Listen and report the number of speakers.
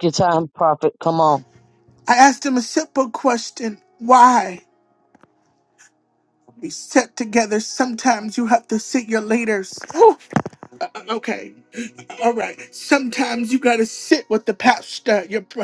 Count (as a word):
two